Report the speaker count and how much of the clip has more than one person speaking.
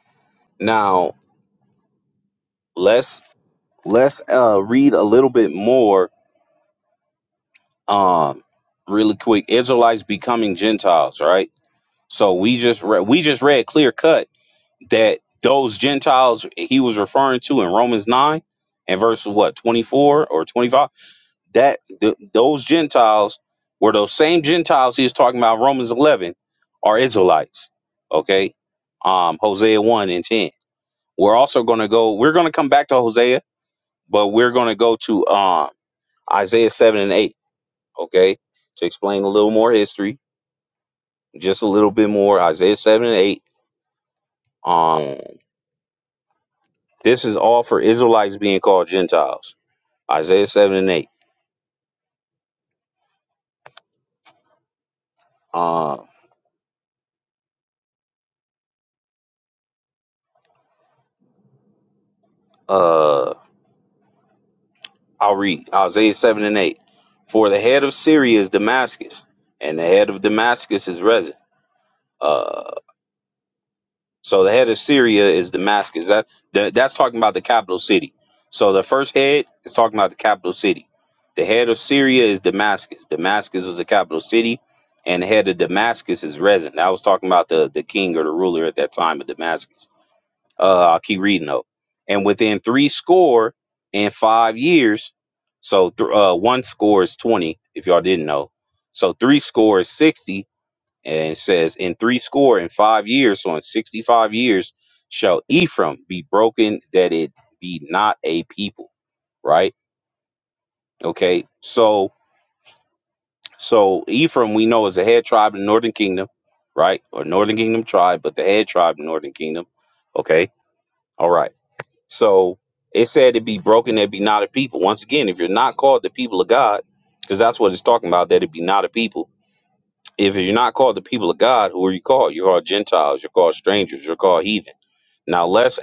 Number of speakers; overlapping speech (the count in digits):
1, no overlap